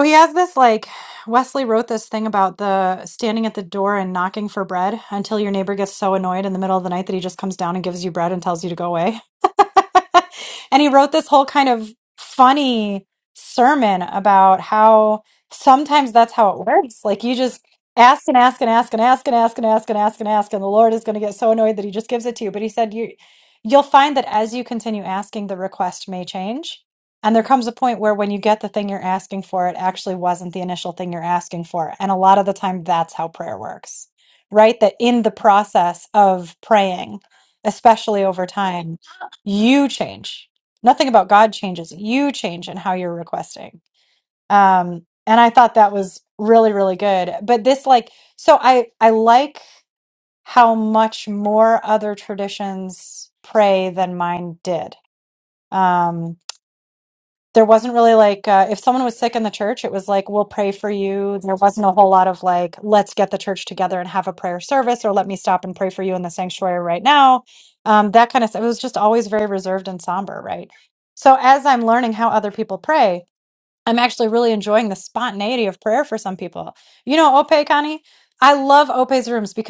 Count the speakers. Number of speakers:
1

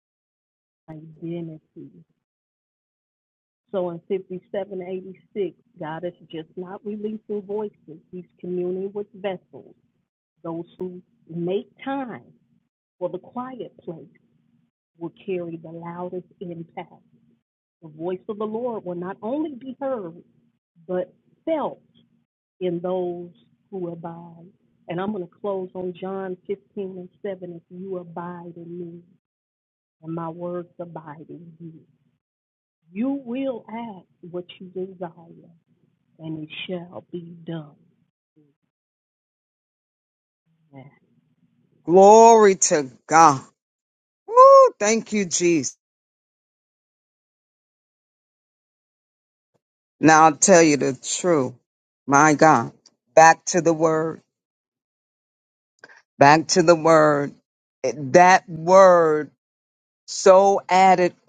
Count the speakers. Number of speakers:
2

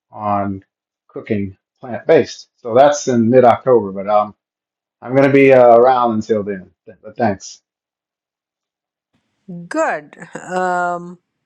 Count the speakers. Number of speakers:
2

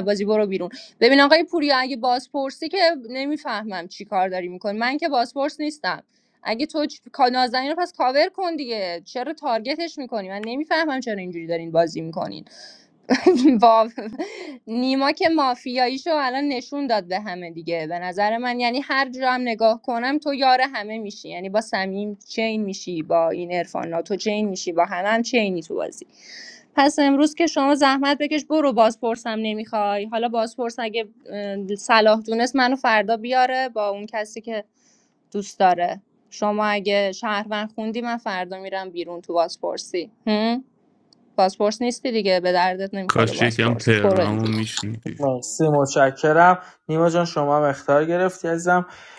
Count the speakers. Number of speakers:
3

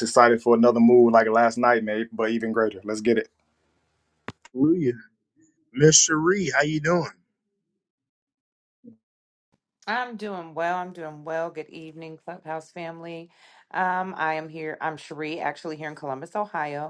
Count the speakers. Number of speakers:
3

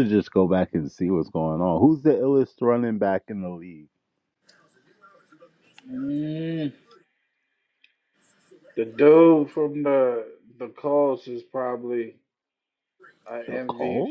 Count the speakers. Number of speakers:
2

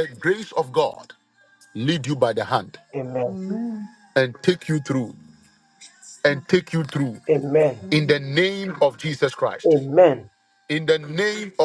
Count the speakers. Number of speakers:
3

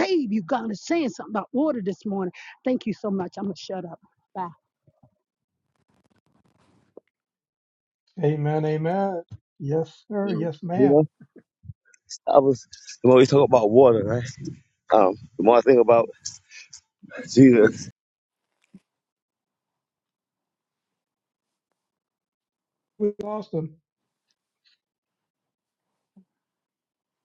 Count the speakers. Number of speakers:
3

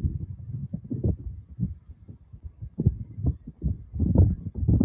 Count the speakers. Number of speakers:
0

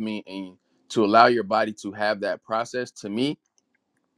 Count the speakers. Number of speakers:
1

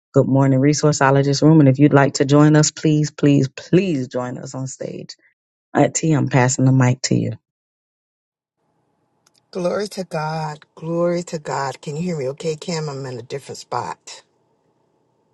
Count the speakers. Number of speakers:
2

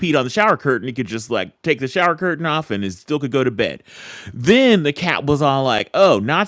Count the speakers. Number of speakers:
1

